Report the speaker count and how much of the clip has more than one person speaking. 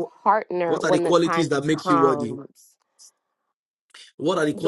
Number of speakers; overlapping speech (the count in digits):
2, about 39%